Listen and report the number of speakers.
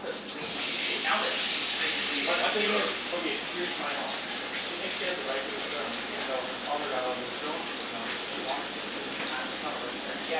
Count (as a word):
two